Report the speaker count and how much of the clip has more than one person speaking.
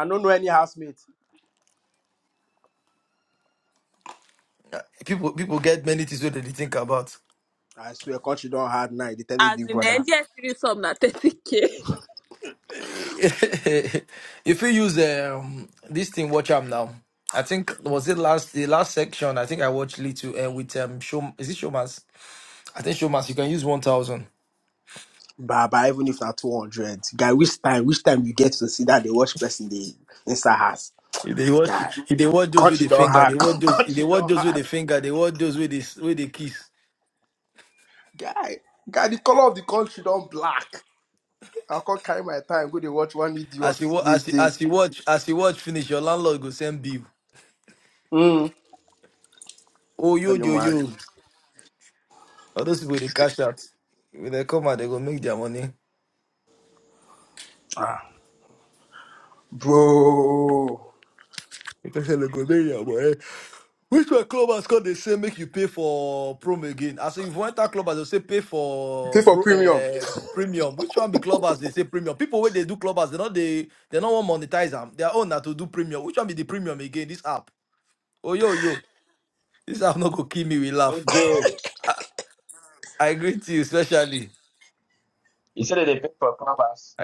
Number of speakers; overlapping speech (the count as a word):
four, about 6%